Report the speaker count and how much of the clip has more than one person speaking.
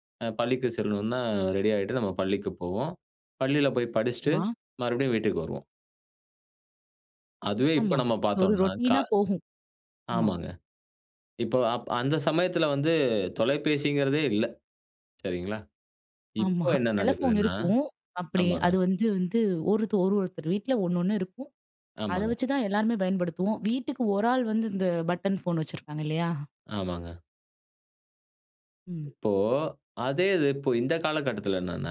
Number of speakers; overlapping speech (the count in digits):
2, about 10%